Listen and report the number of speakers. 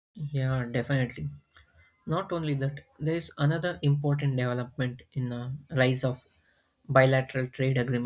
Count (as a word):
one